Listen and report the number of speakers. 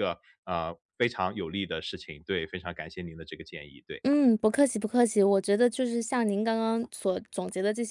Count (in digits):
2